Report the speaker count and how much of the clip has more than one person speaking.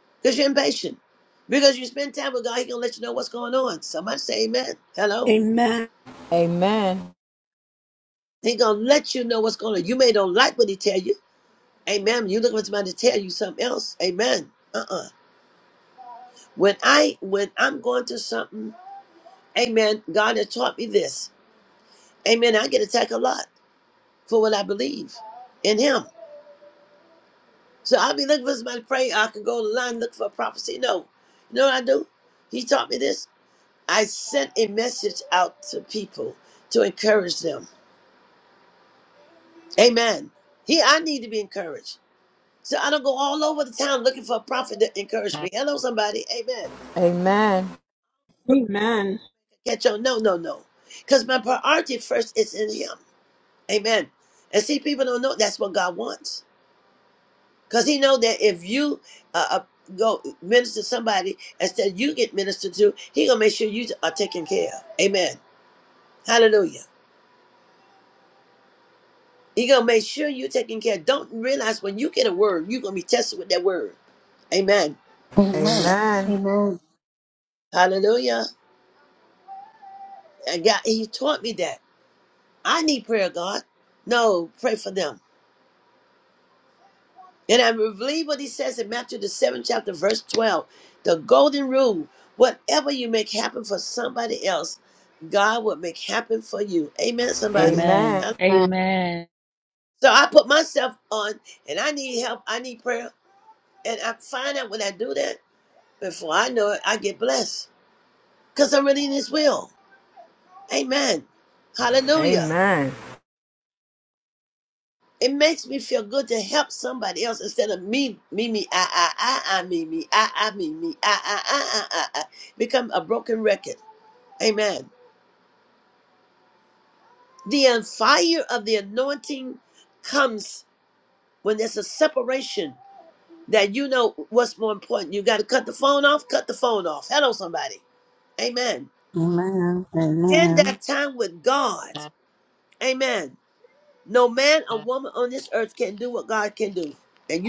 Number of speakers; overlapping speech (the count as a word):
six, about 1%